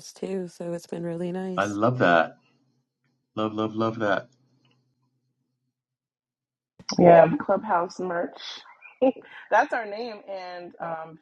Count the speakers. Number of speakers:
three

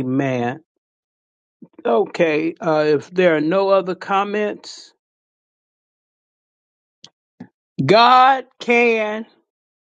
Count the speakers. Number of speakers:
one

